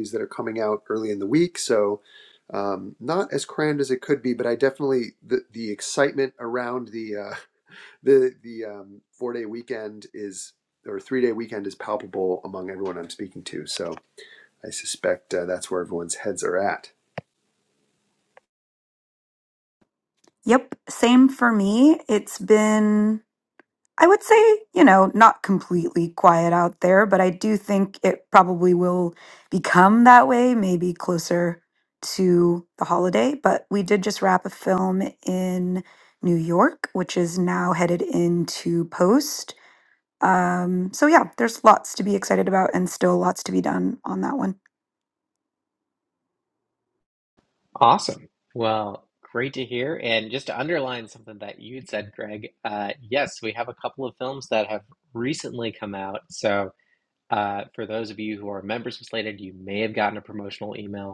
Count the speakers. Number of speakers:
three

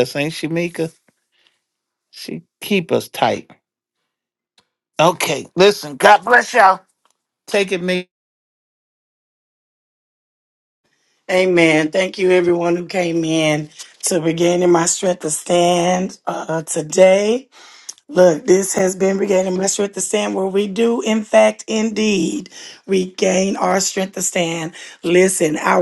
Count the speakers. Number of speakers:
two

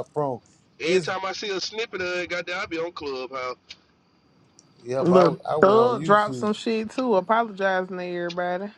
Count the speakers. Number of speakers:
three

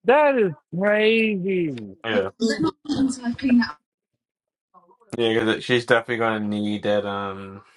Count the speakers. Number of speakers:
three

